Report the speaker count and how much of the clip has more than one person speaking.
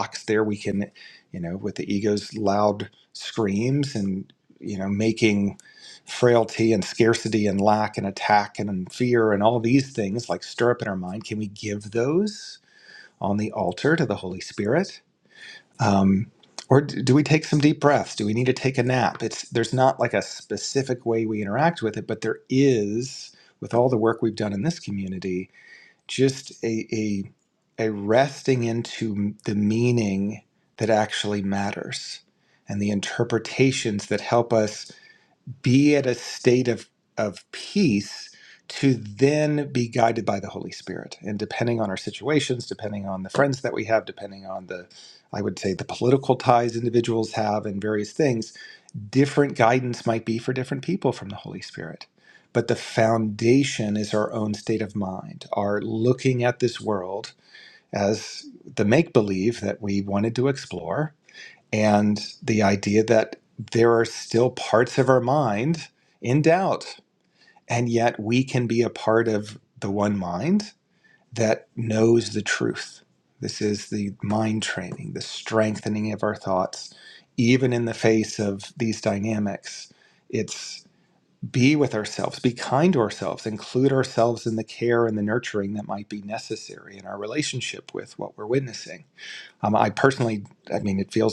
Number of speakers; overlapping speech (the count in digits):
1, no overlap